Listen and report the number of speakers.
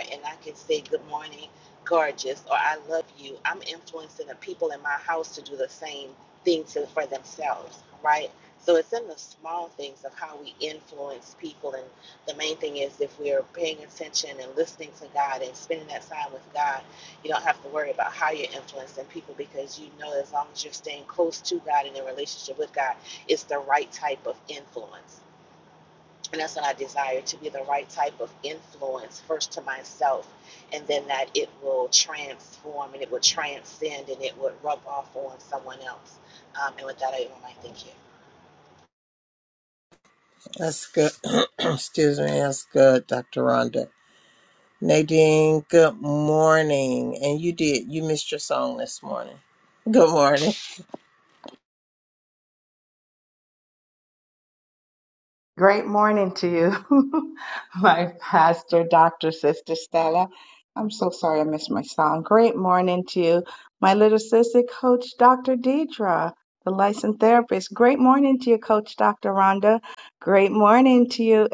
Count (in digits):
3